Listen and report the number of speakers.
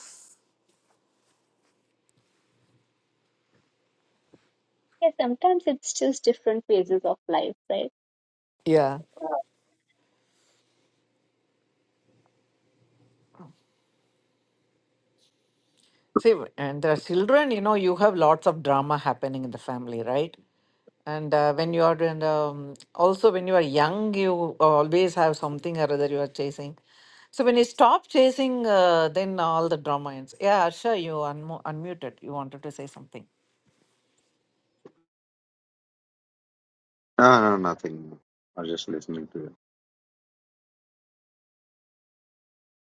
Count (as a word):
three